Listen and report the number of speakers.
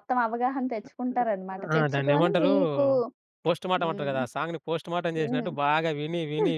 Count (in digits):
2